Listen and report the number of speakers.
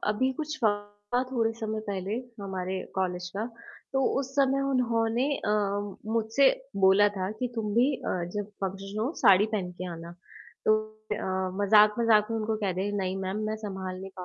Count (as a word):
one